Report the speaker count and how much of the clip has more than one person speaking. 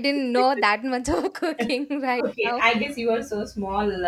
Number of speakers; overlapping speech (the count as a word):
two, about 10%